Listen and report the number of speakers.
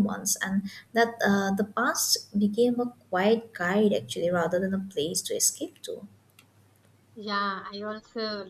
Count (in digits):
2